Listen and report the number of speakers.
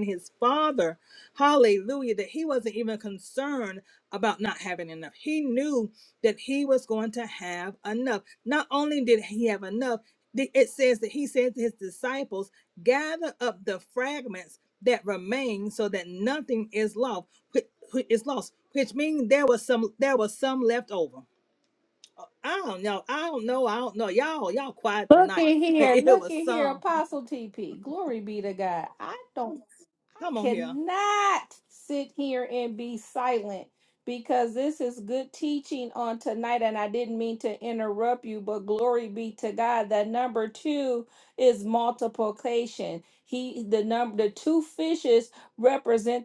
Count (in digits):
2